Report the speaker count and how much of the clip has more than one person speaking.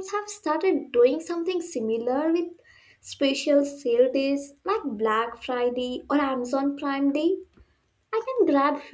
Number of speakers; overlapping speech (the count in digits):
1, no overlap